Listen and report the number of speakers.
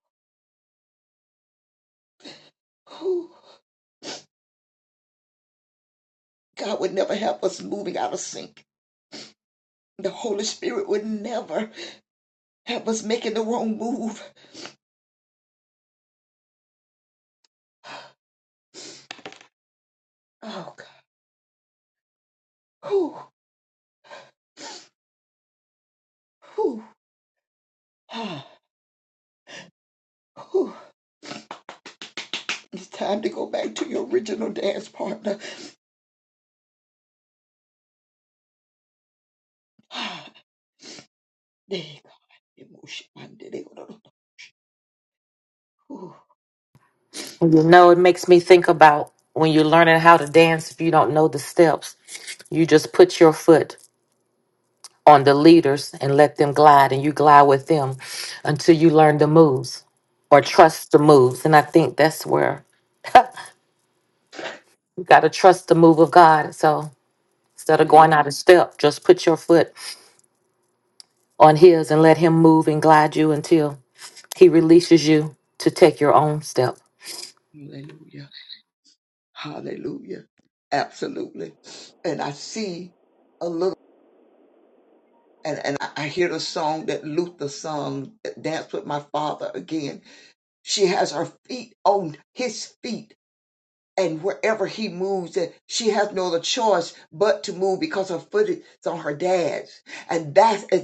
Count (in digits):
2